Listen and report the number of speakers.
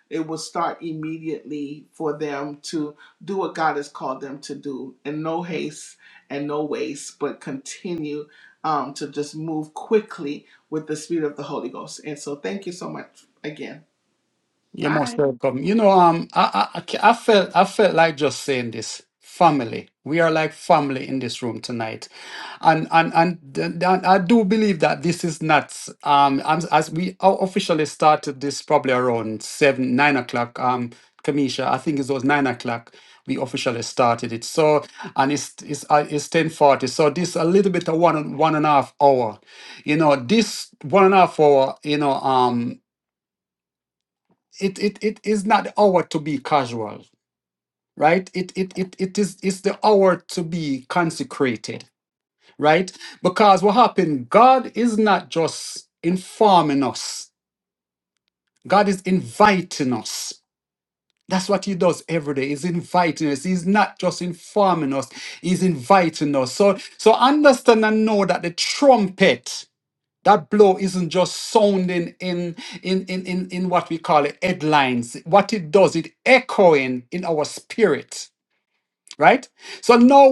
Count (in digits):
2